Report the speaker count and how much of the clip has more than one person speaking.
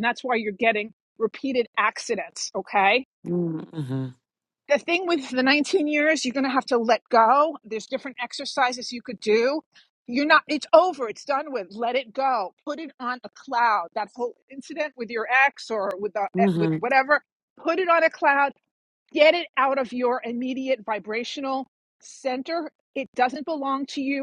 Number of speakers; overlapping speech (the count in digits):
2, about 2%